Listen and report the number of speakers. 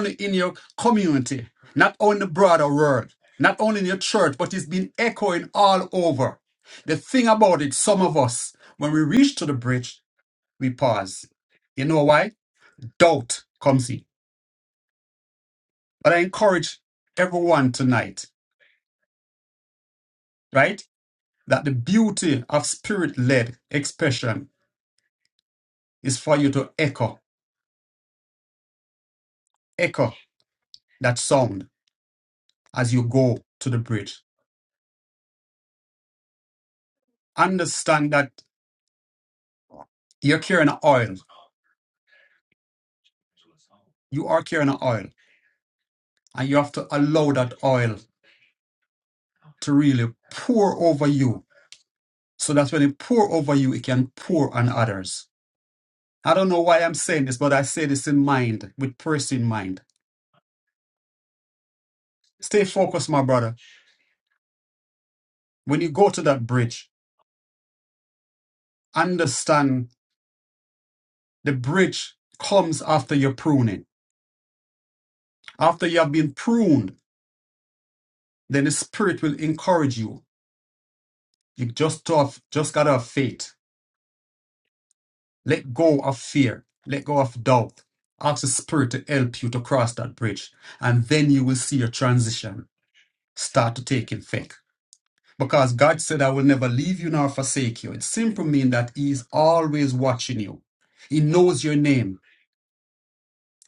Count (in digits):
1